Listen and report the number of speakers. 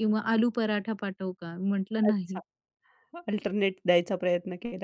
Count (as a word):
two